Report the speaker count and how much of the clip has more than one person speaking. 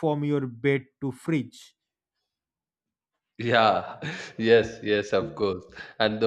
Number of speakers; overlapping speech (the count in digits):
2, no overlap